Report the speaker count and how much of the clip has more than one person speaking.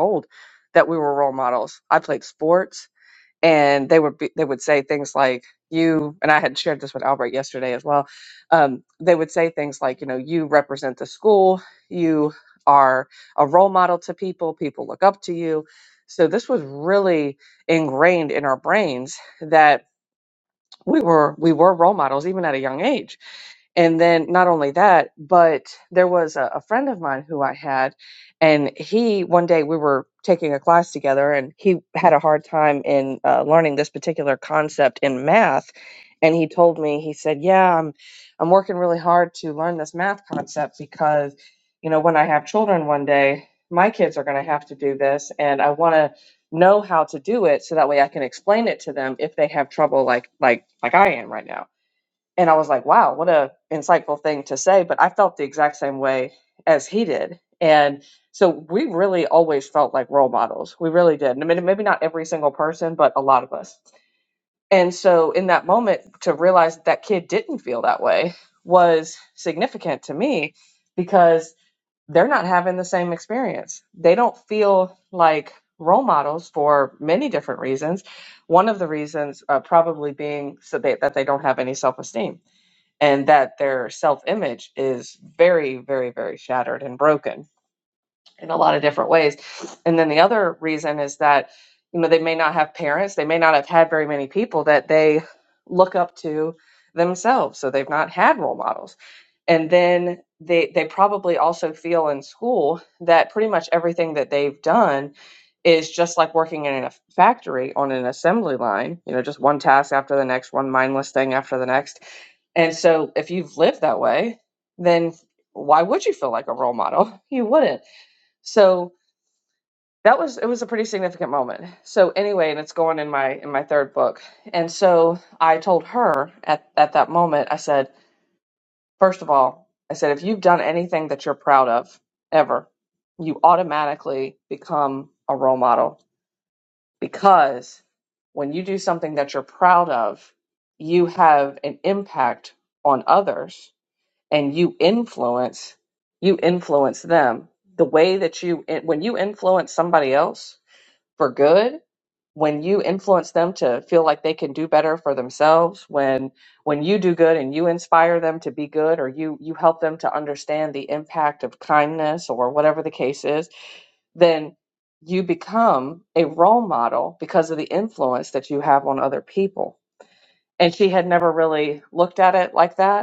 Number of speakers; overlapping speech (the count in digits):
1, no overlap